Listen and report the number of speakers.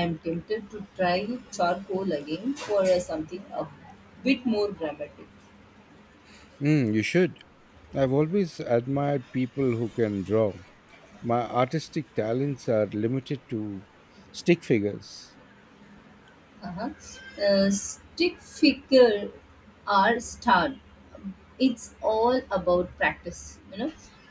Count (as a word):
two